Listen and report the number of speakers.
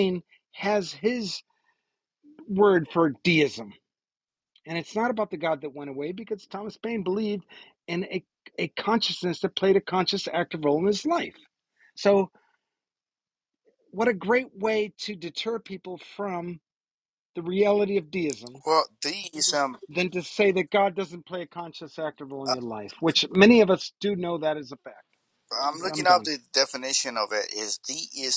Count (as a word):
two